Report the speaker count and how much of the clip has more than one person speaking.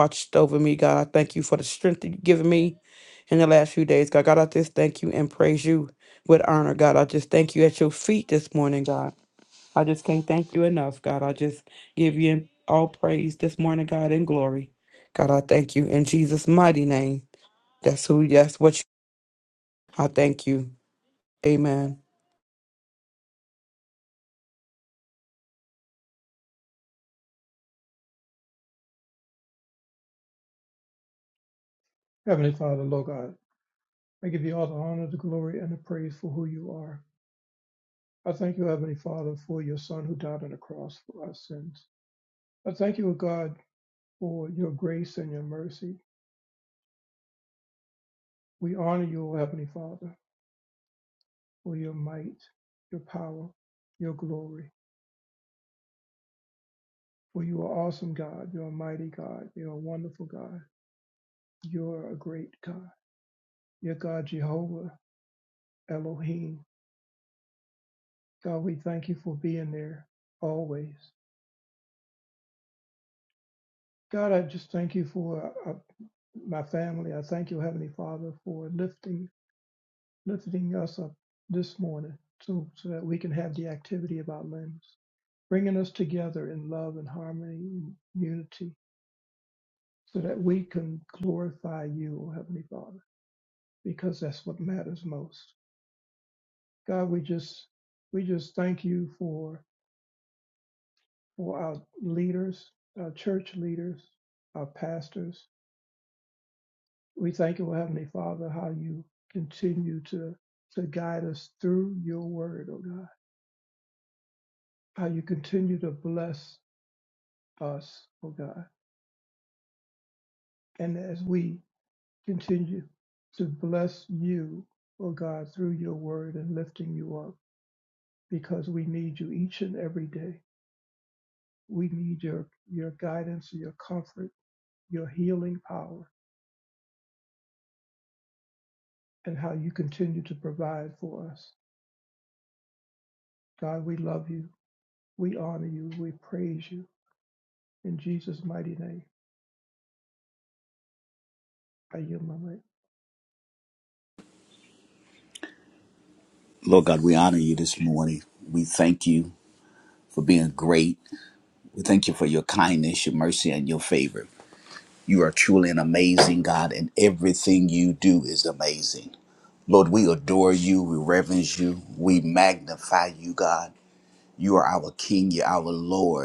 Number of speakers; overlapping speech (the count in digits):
3, no overlap